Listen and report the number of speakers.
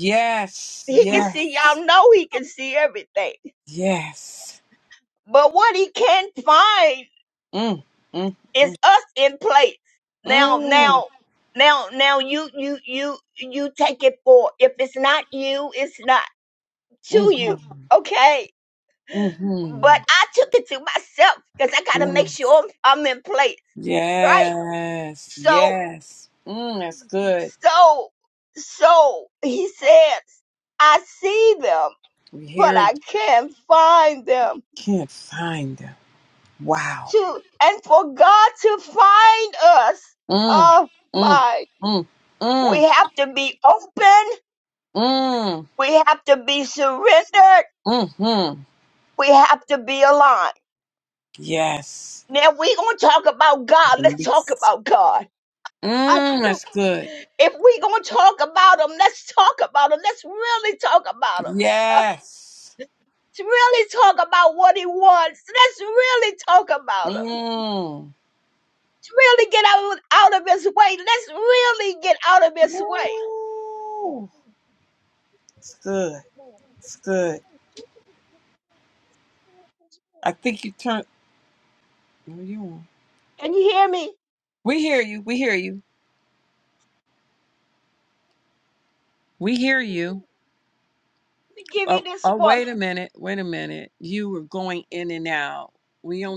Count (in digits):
2